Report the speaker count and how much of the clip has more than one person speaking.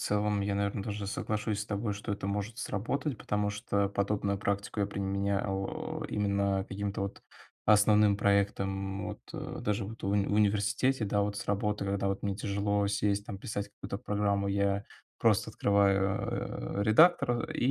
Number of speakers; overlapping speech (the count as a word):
one, no overlap